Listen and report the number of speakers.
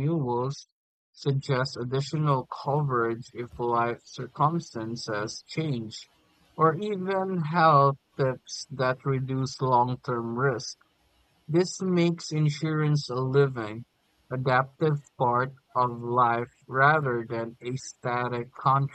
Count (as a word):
one